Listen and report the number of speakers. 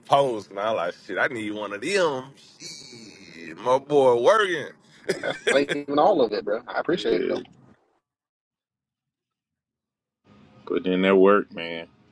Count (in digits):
3